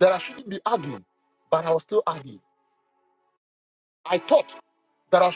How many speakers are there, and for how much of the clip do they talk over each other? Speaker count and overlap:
one, no overlap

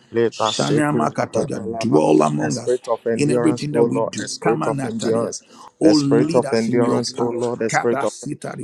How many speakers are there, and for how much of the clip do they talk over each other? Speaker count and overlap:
two, about 67%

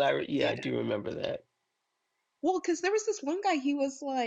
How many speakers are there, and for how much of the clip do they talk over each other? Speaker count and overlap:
two, about 7%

